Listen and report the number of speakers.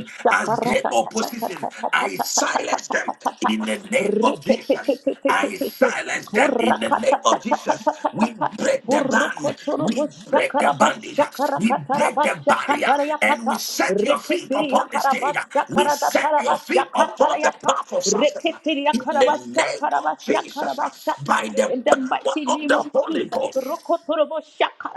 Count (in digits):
2